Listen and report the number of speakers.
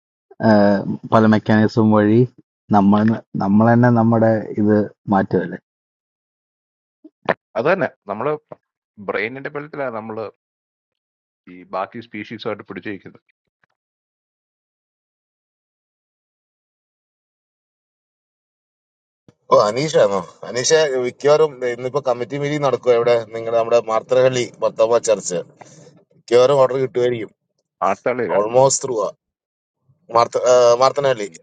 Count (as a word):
three